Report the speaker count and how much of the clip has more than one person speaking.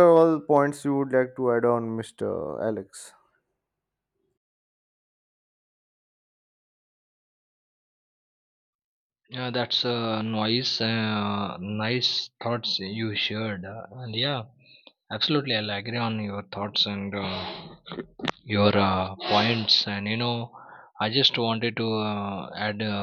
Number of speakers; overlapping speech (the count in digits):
2, no overlap